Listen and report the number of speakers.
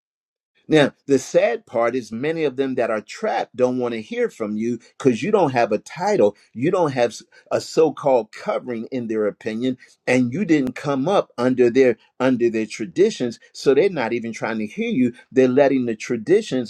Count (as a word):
one